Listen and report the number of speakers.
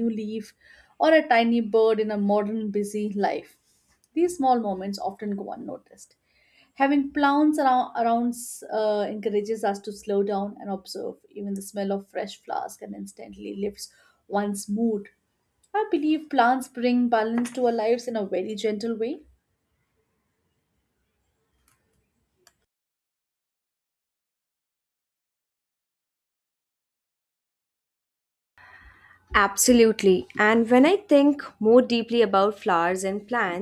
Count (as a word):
two